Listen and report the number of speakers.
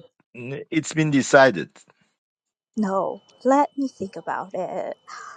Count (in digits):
2